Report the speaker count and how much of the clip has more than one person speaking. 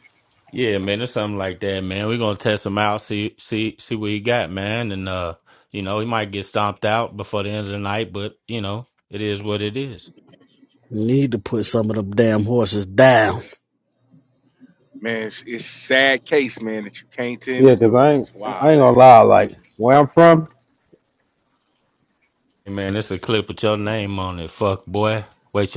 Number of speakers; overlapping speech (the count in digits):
4, about 5%